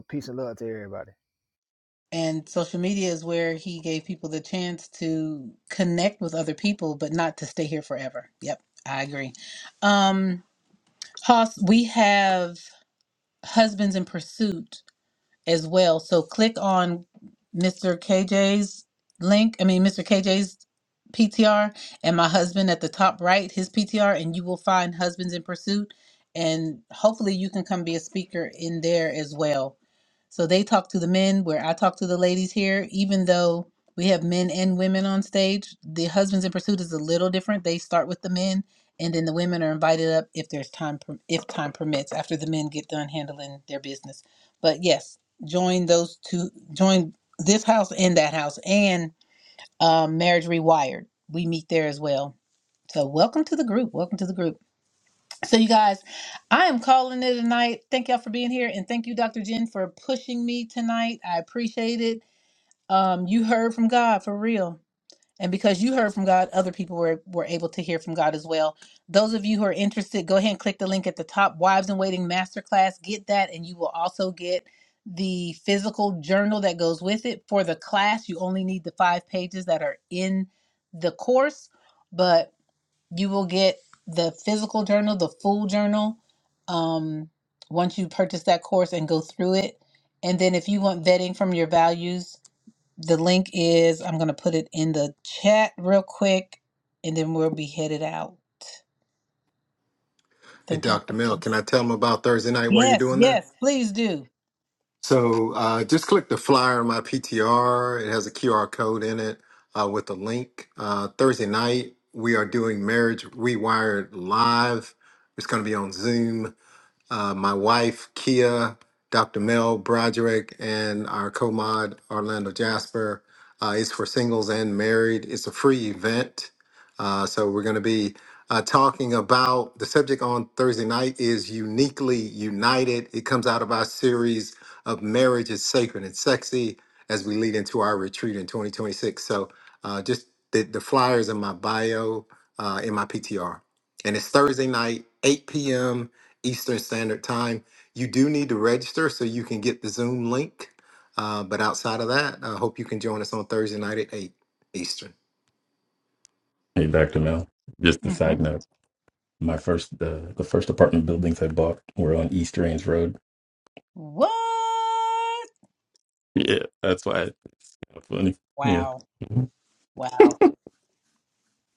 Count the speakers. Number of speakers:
4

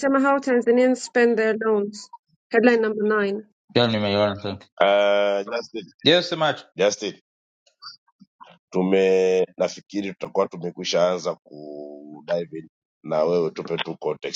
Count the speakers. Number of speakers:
3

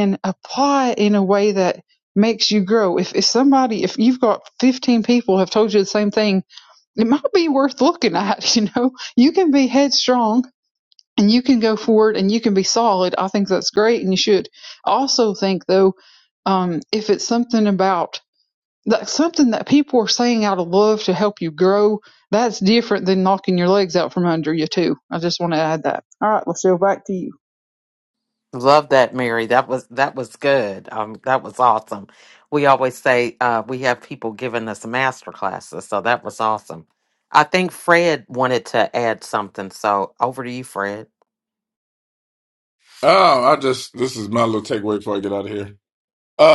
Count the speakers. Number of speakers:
3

